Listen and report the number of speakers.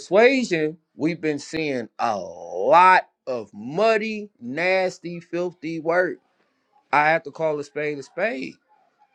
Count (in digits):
1